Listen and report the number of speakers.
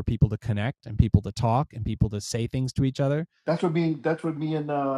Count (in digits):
2